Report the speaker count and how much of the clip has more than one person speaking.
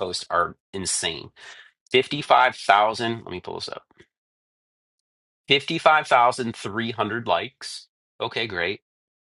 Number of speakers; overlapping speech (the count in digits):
1, no overlap